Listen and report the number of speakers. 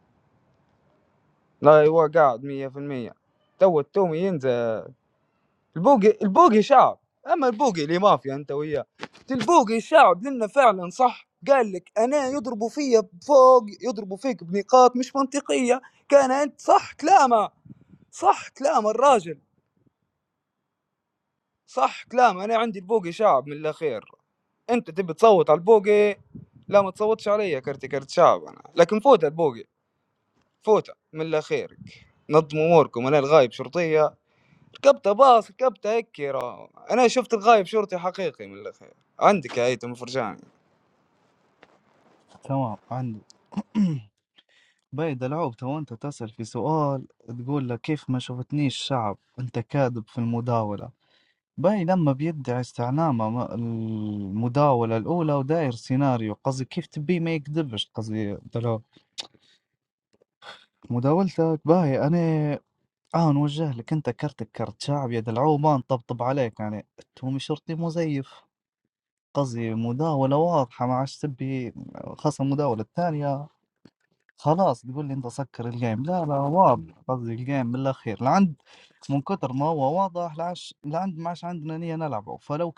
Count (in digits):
2